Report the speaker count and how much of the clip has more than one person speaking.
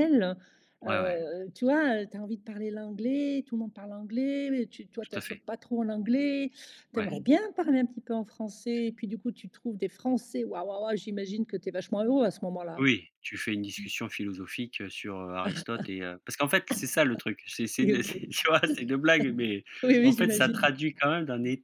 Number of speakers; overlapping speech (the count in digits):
2, about 9%